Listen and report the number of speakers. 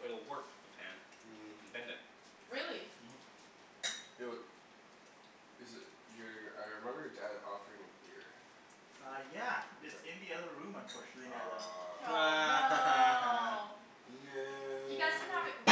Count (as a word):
four